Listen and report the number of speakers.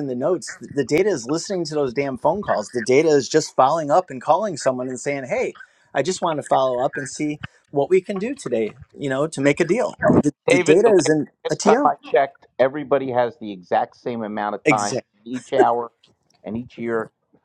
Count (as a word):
two